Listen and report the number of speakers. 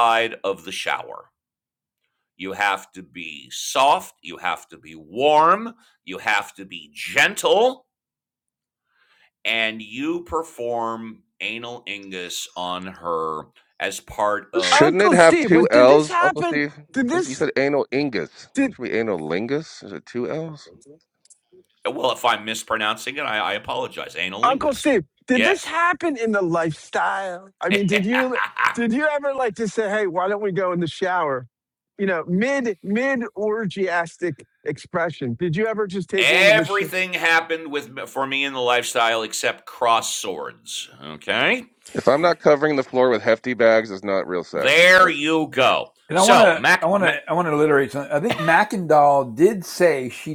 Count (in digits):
4